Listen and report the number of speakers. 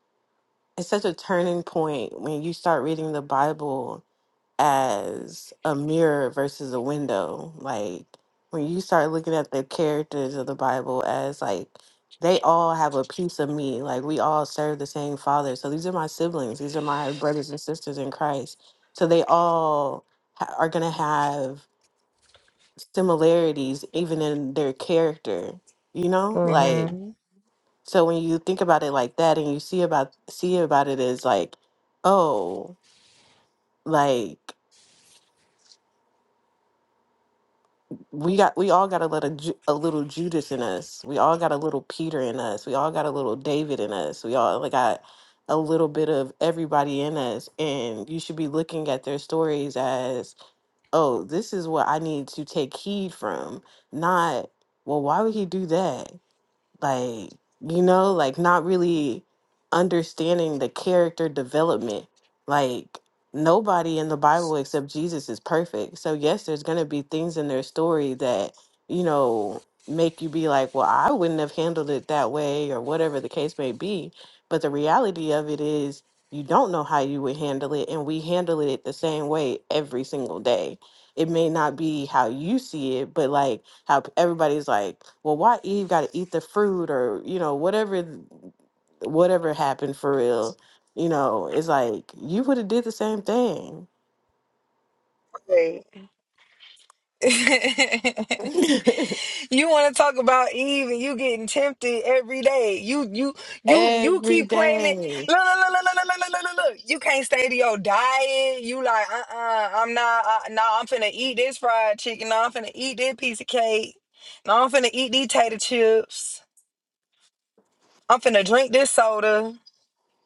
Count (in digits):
2